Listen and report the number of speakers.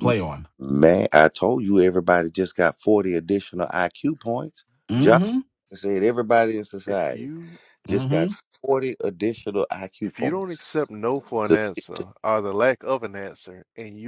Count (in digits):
3